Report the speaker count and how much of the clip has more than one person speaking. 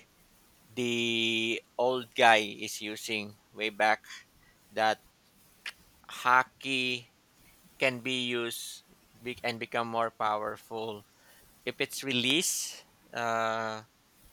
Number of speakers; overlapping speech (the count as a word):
one, no overlap